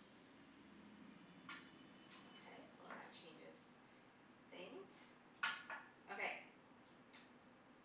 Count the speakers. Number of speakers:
1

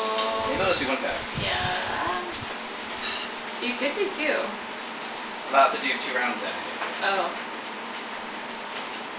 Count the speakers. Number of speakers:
2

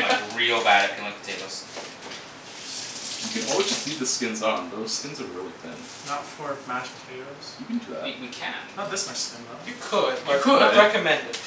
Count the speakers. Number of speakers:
4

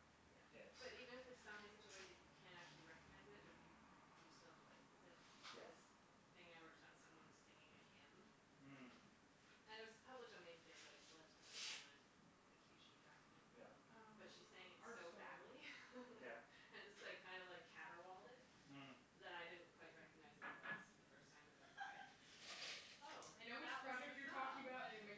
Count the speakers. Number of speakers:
3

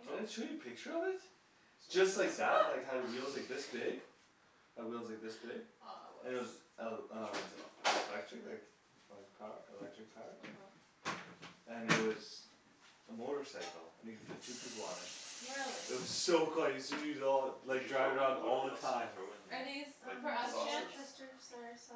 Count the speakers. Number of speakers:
4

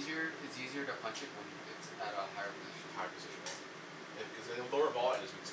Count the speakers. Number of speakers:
2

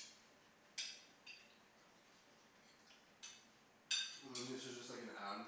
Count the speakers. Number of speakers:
1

